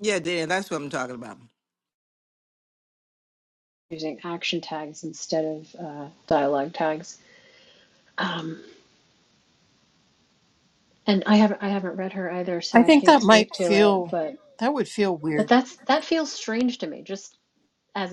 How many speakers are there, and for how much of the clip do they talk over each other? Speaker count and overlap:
3, about 8%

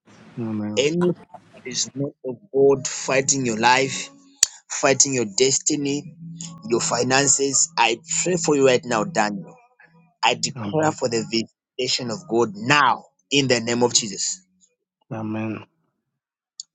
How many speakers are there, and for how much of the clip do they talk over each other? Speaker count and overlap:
2, about 3%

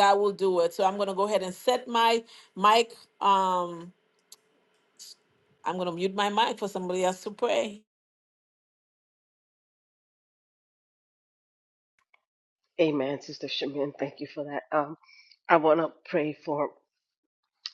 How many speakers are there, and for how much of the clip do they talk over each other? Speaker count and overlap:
2, no overlap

